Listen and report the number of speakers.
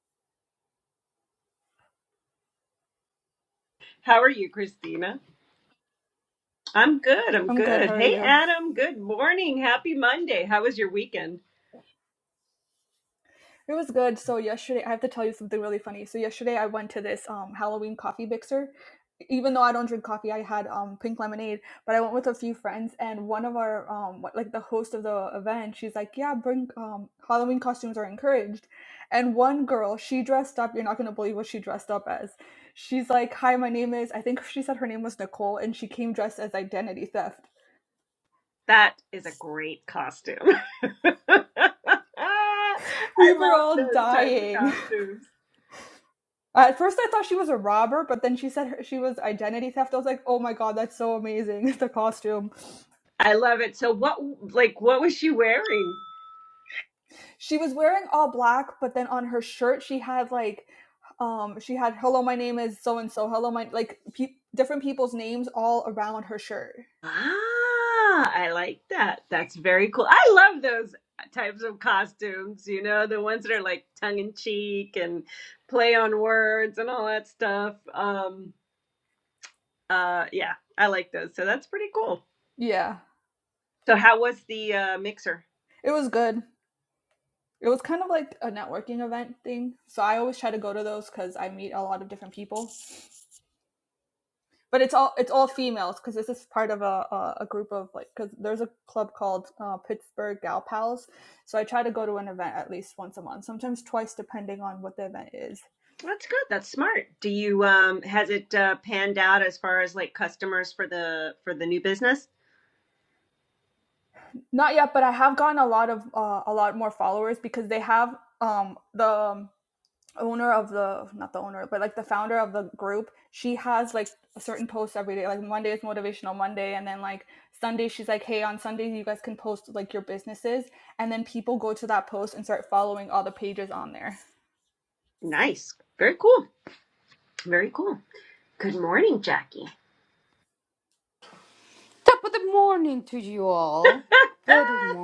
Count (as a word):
three